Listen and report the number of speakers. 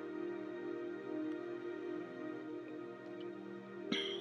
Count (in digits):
0